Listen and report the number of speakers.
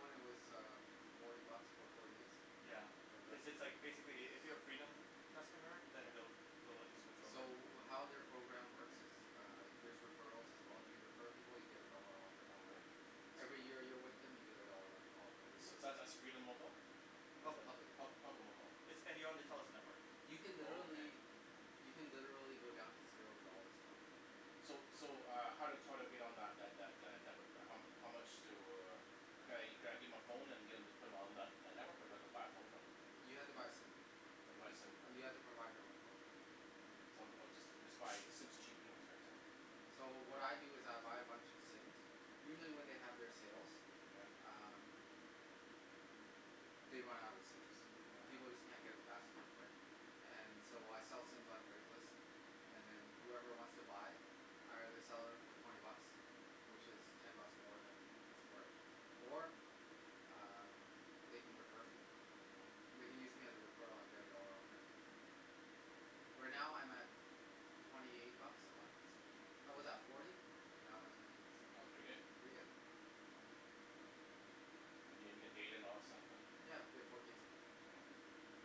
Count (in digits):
3